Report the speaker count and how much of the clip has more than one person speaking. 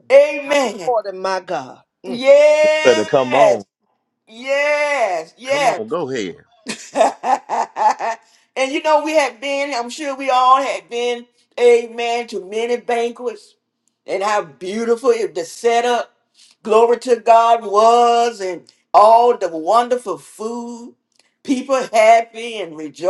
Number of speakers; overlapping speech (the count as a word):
three, about 5%